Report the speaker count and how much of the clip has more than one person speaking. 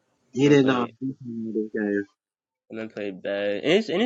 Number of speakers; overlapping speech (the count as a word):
two, about 11%